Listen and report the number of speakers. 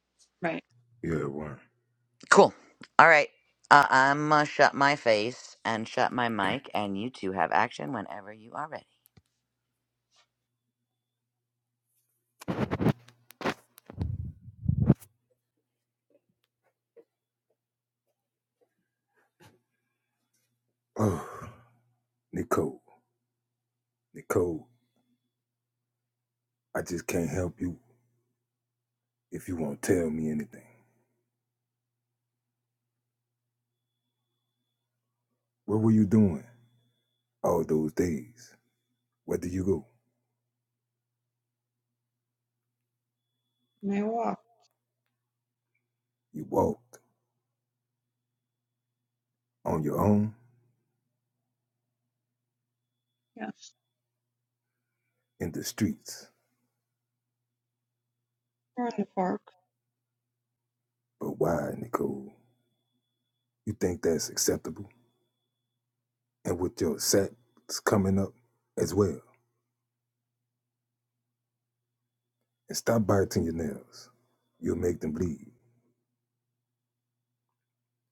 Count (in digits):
3